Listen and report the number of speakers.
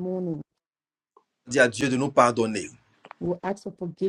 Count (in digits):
2